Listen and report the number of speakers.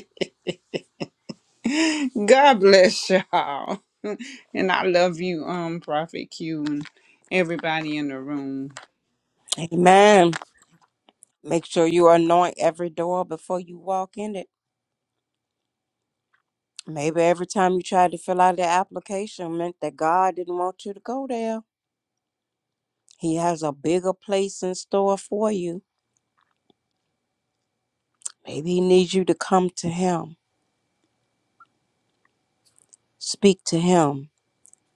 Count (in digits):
2